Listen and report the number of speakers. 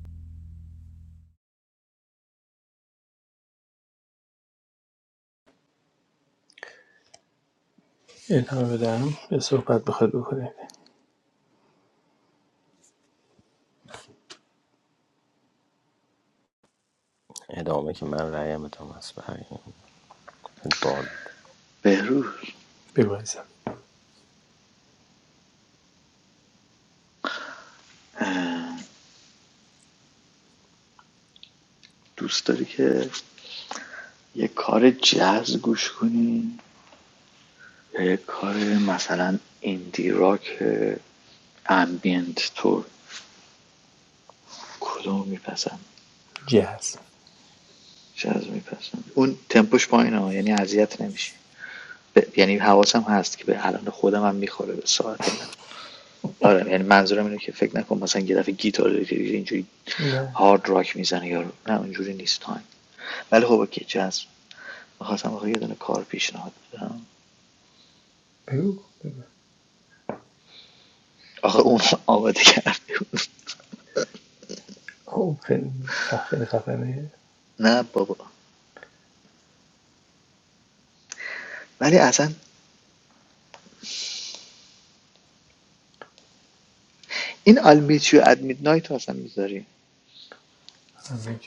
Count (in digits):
3